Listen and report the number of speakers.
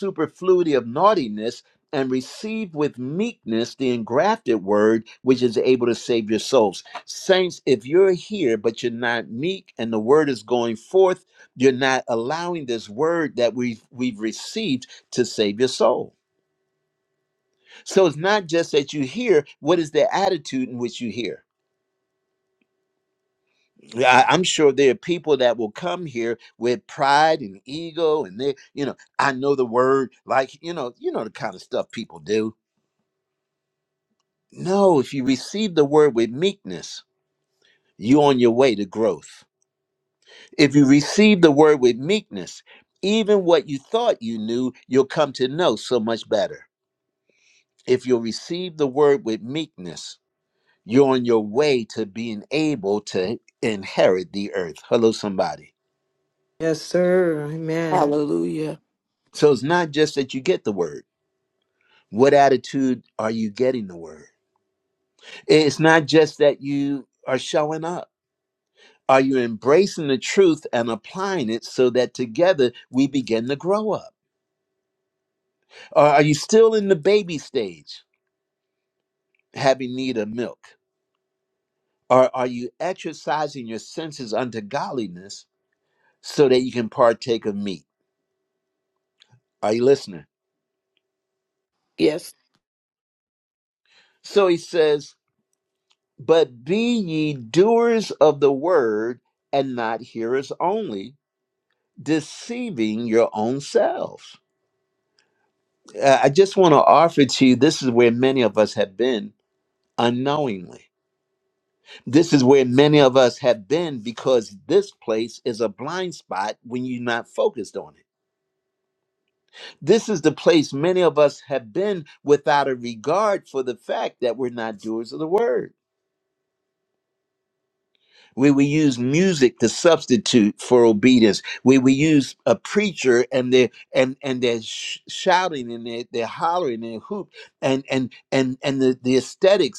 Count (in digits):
3